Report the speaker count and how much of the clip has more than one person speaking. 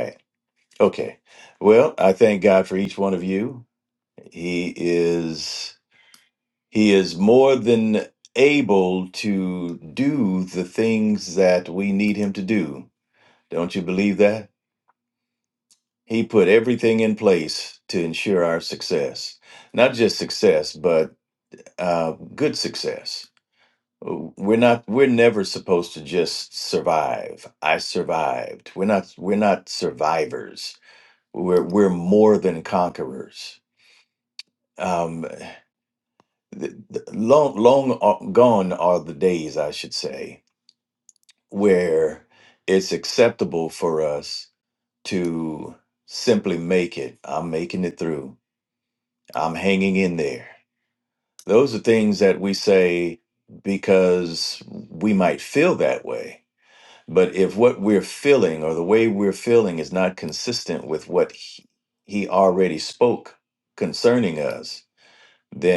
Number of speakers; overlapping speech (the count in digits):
1, no overlap